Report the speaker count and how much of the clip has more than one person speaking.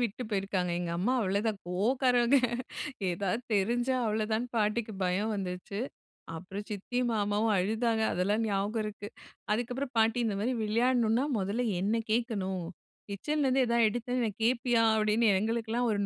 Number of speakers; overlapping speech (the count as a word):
one, no overlap